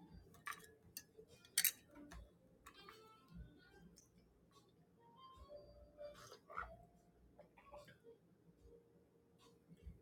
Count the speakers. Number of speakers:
0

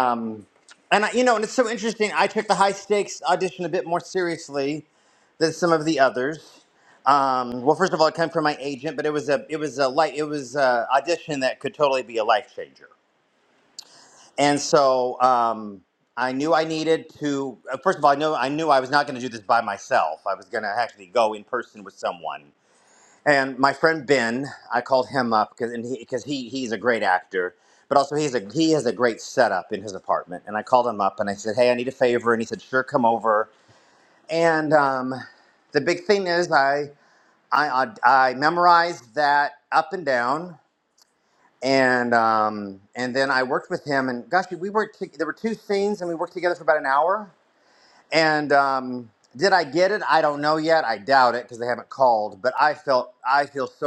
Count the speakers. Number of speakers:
1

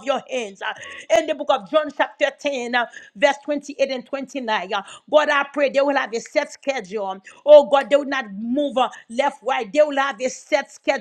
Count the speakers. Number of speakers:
1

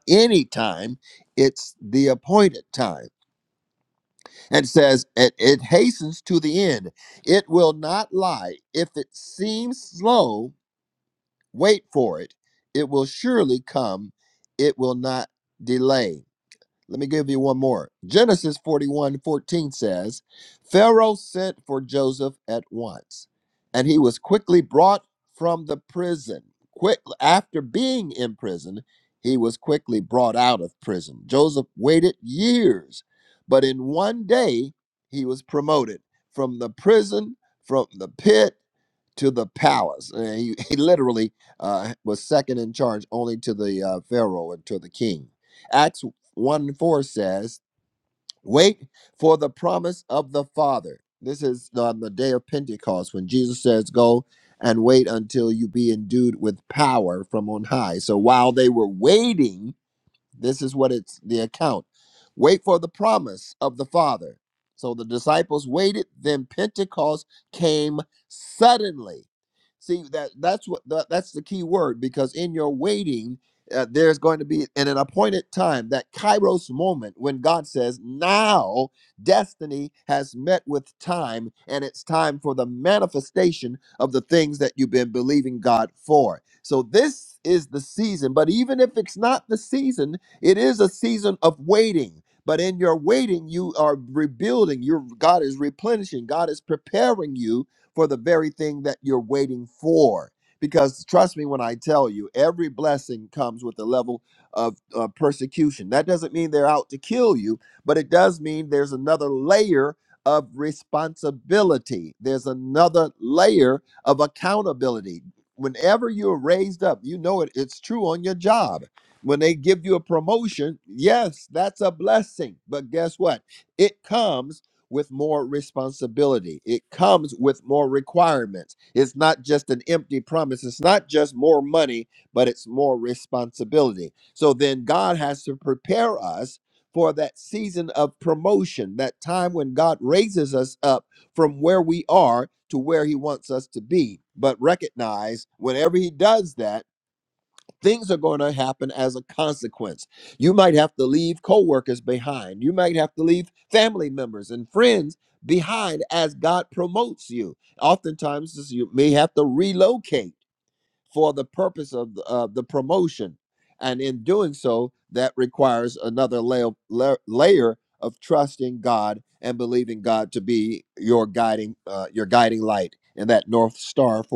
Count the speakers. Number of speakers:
1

